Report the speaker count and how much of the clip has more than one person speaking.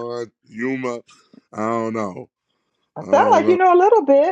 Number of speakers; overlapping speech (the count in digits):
2, about 13%